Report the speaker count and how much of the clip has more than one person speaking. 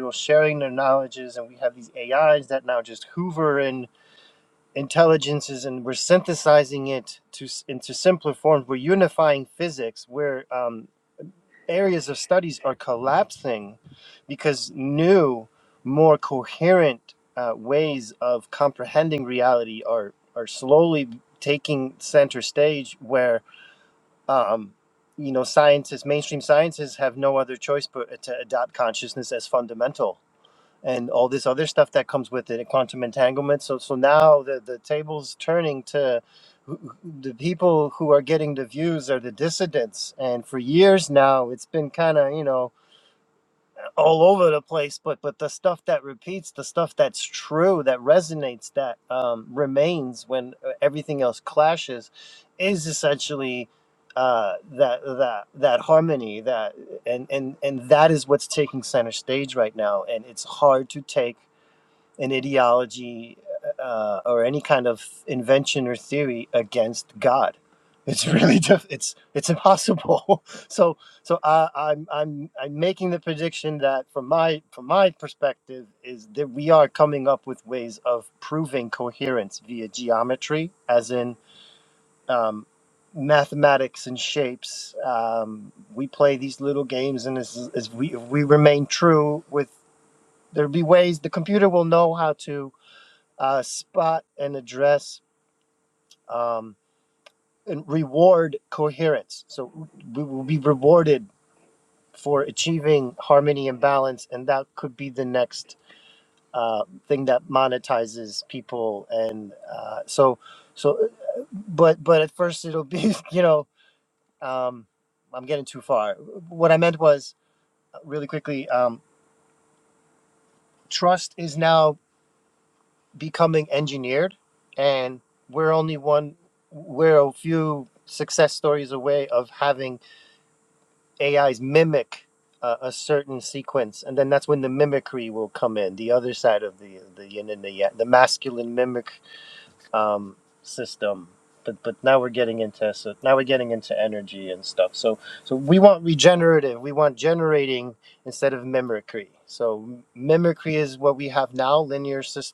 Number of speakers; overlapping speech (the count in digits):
1, no overlap